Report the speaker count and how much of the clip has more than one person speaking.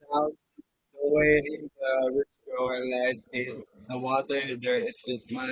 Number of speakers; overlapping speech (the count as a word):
one, no overlap